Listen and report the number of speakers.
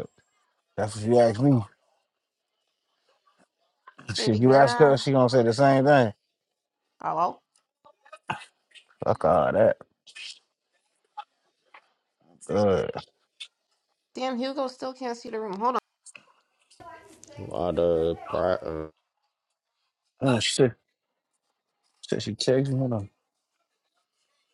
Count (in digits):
3